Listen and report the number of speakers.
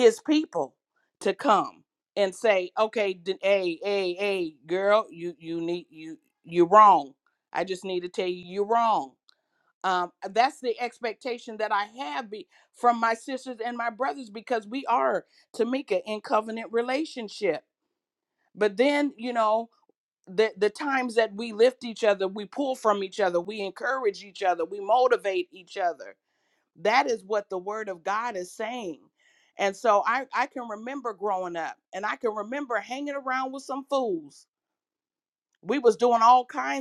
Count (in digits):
1